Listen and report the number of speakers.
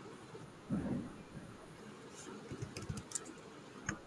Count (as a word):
zero